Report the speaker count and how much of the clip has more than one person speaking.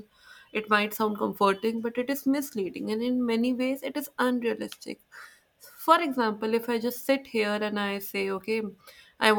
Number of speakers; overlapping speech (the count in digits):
1, no overlap